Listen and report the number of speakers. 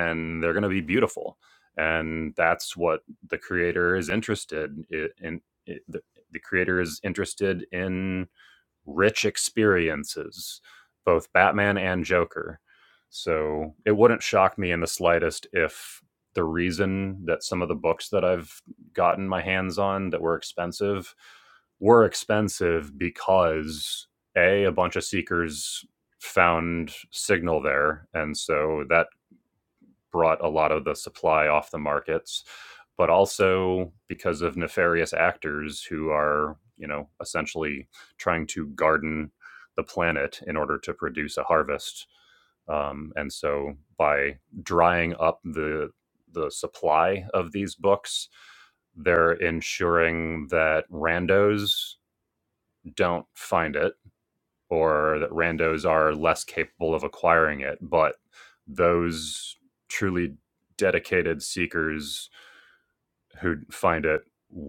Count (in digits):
1